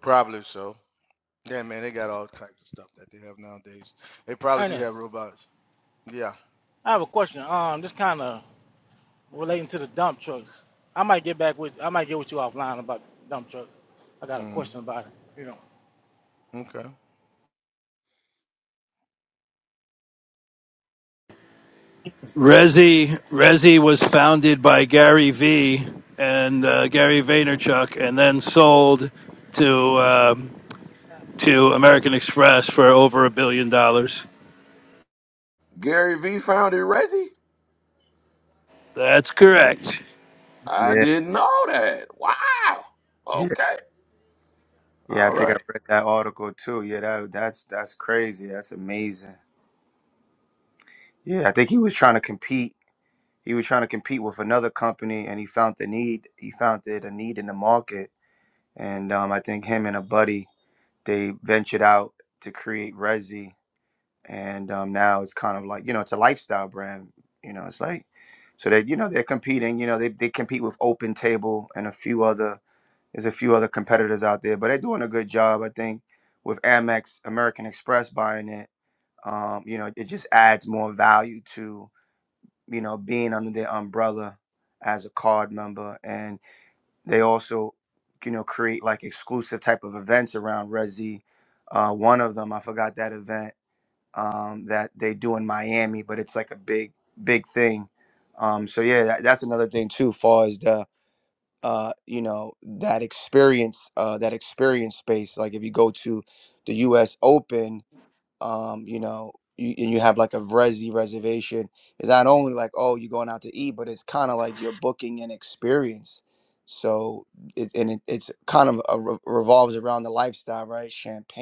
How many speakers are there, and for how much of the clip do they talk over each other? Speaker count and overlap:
5, about 1%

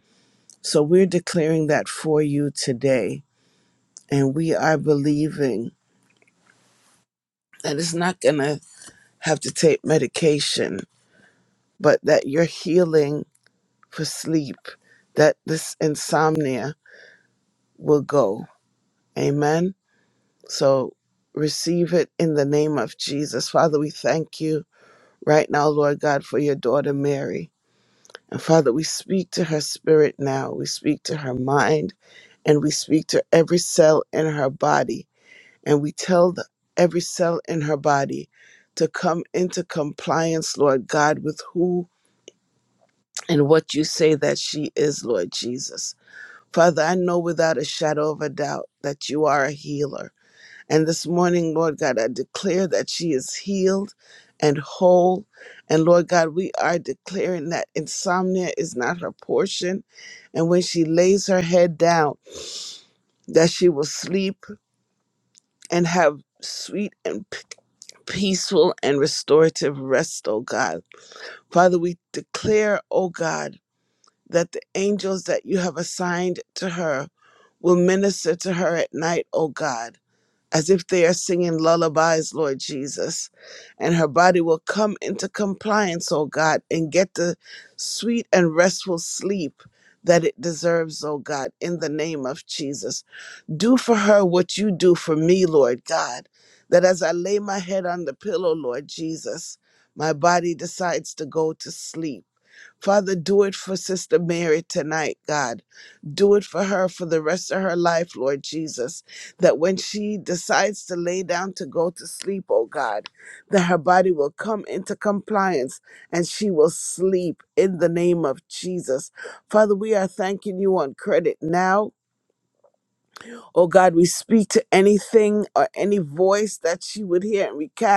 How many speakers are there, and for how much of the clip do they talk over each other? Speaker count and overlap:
1, no overlap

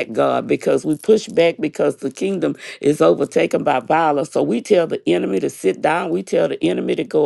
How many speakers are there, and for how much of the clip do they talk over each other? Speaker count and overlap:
1, no overlap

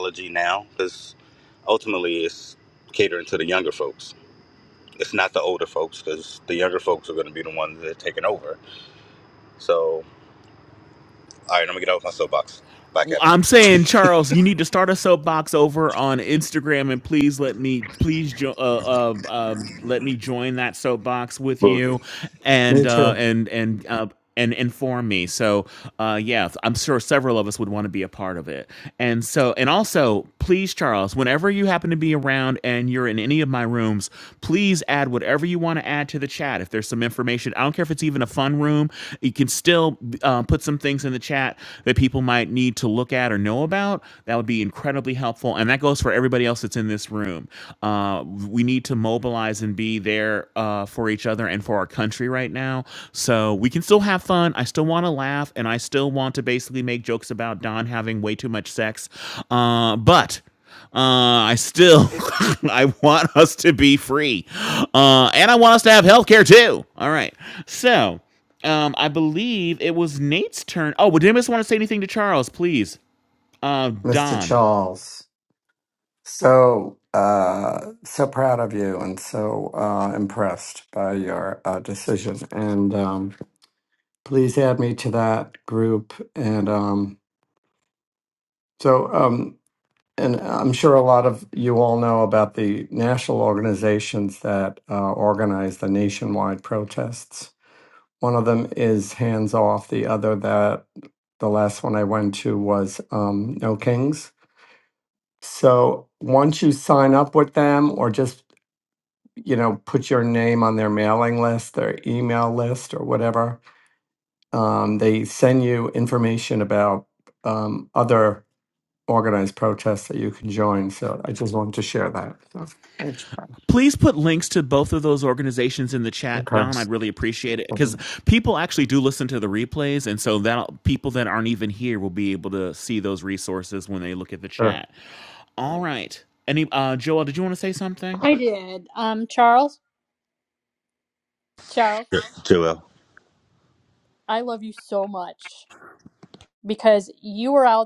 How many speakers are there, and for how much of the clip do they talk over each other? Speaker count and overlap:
4, about 1%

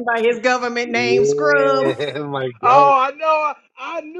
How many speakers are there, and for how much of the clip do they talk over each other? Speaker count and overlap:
3, about 32%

